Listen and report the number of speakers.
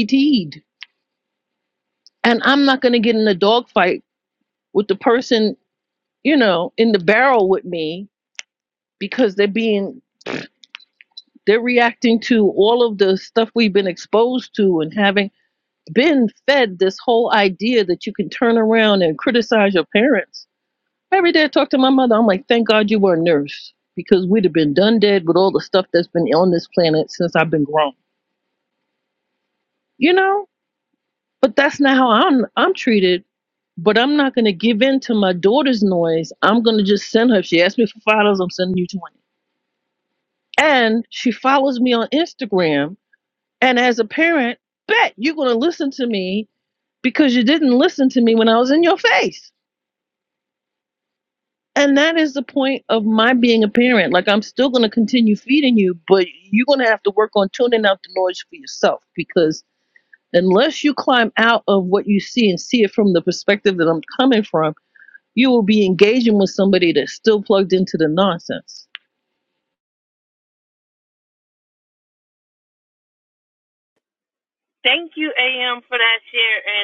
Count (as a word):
two